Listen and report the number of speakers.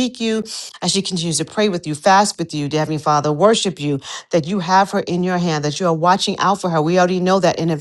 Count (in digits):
1